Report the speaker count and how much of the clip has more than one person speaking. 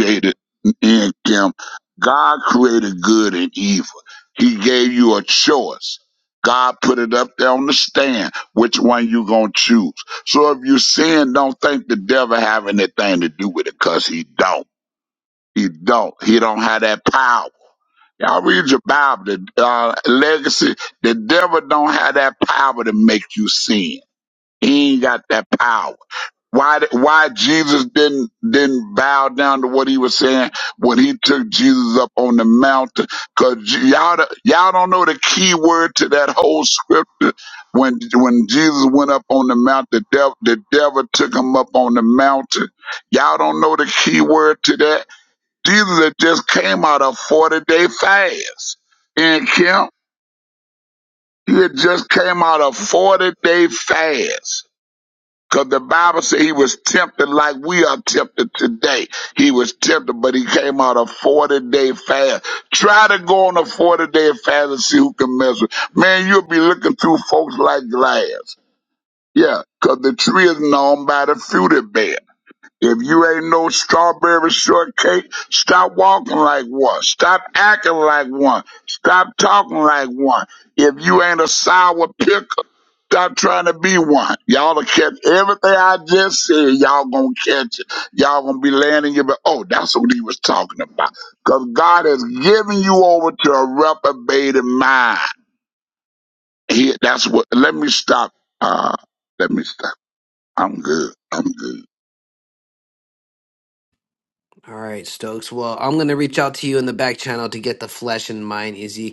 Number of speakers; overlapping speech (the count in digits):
2, no overlap